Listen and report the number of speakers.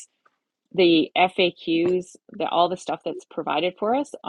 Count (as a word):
one